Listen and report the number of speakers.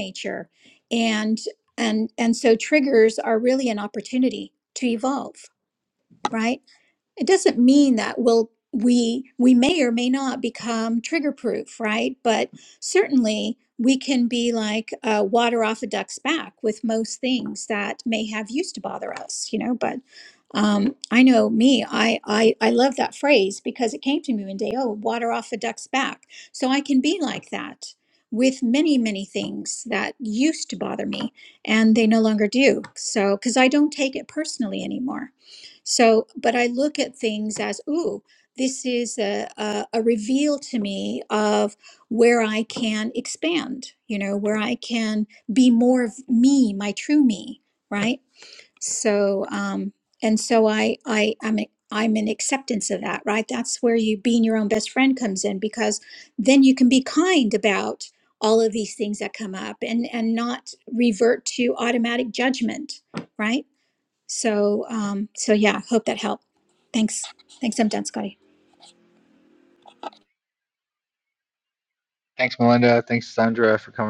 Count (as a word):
two